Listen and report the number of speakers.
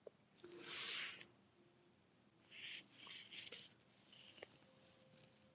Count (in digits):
0